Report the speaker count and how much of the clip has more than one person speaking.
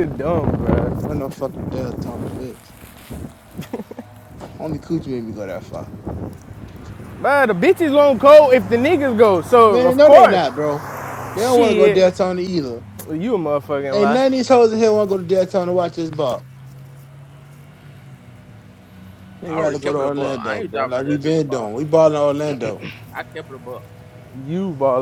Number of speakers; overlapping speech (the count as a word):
three, about 16%